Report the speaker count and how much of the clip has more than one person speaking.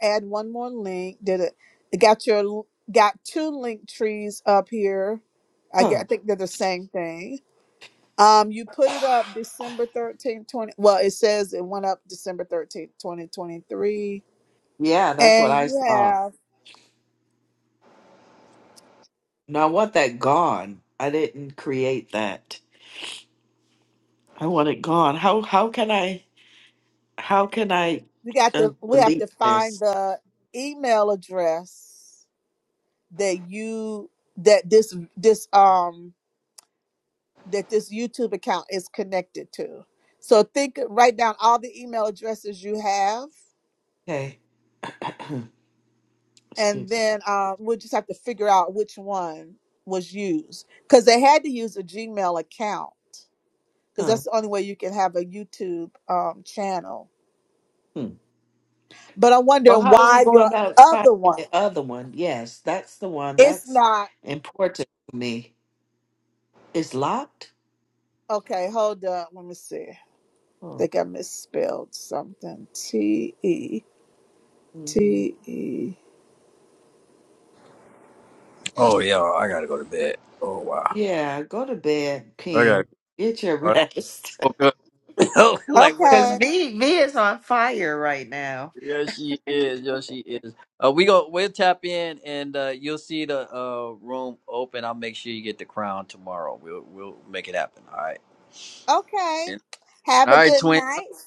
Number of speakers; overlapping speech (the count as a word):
three, about 7%